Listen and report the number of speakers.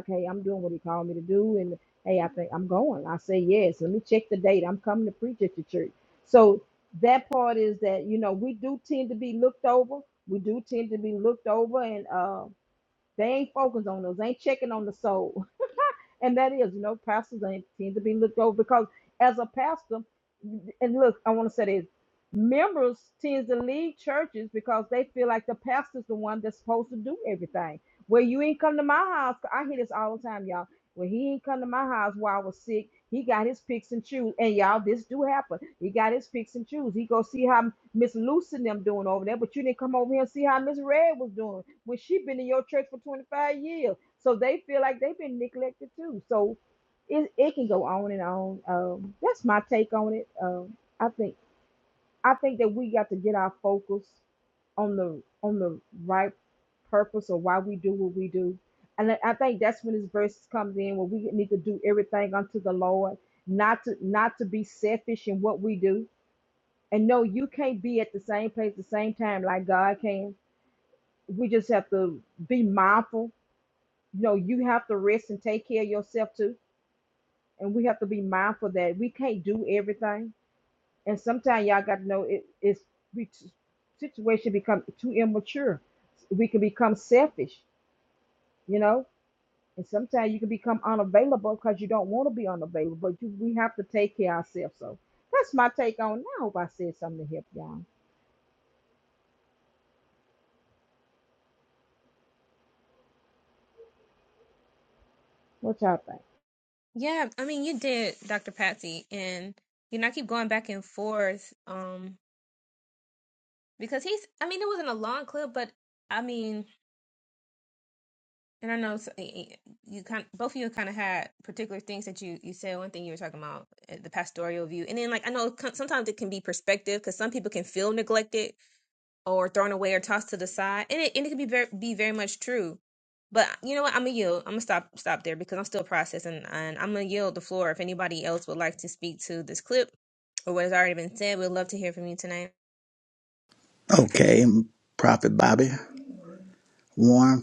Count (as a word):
three